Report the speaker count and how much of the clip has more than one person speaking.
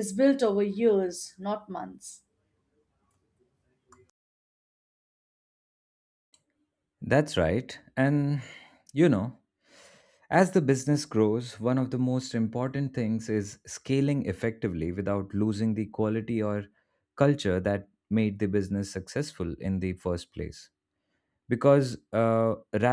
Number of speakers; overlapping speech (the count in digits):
2, no overlap